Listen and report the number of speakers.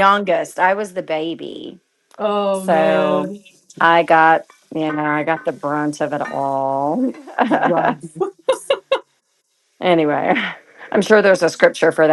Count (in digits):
2